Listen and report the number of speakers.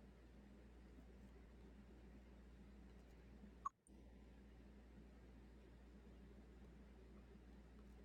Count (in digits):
0